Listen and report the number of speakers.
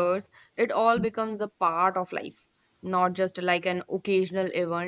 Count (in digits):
1